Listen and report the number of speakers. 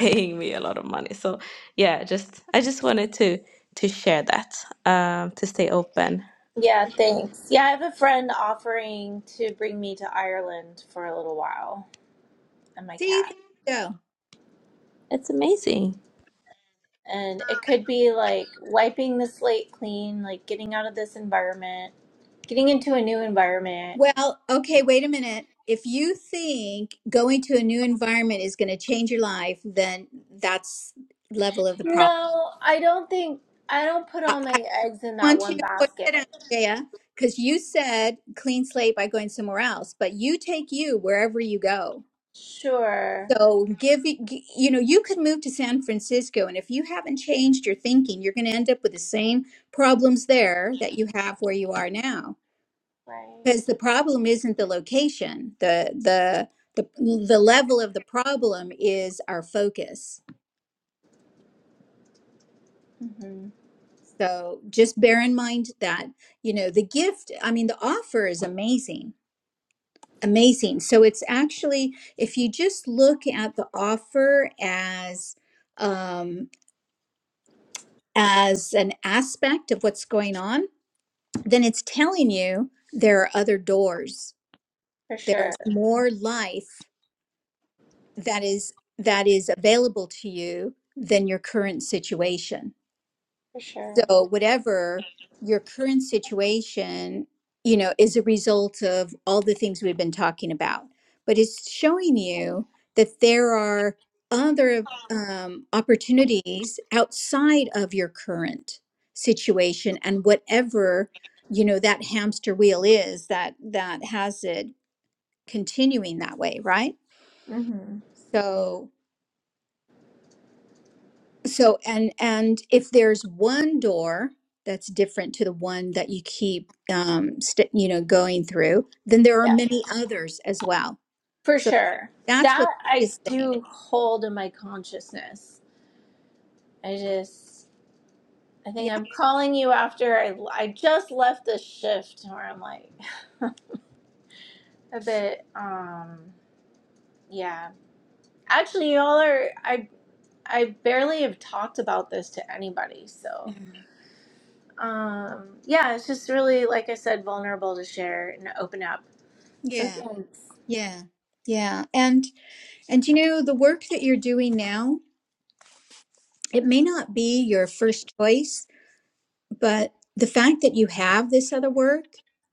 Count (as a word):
three